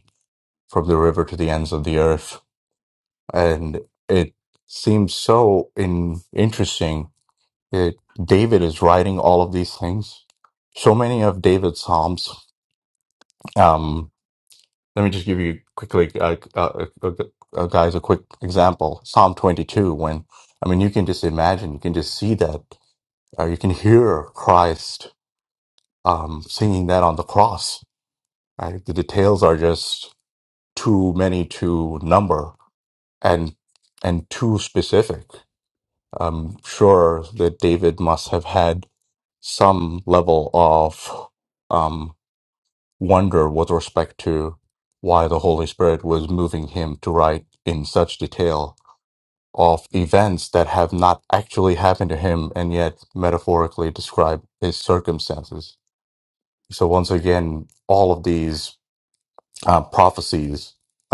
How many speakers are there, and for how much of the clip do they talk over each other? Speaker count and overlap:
1, no overlap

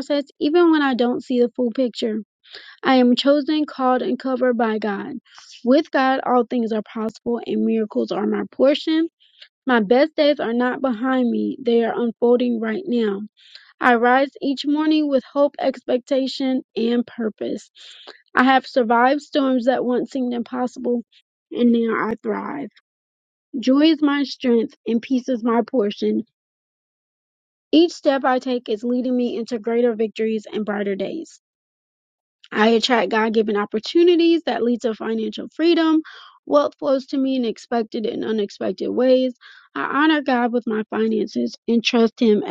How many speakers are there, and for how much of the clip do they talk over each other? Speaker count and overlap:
1, no overlap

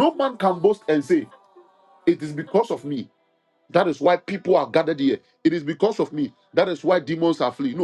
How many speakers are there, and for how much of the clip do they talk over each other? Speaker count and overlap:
1, no overlap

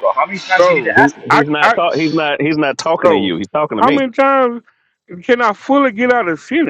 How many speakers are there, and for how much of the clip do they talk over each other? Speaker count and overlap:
3, about 26%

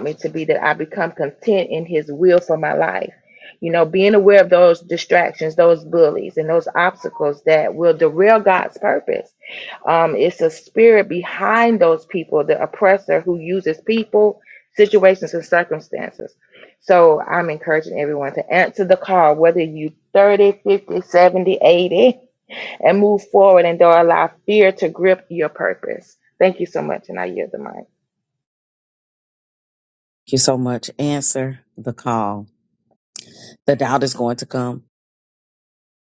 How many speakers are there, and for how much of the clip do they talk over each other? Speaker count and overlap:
2, no overlap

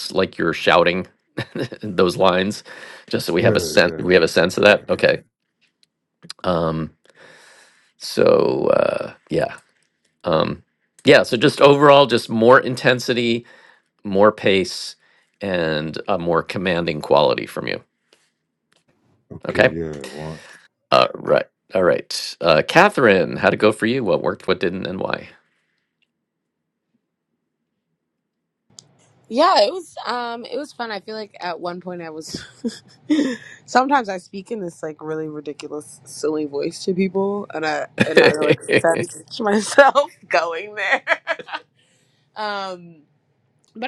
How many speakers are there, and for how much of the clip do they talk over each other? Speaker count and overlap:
3, about 3%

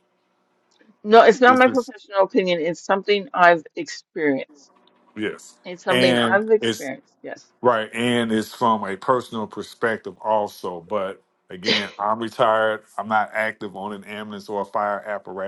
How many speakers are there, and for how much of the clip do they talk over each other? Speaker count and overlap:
2, about 8%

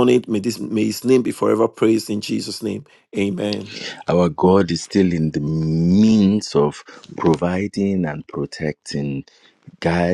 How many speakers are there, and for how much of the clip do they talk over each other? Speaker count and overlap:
2, no overlap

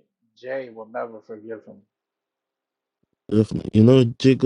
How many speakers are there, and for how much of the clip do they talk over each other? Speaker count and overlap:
2, no overlap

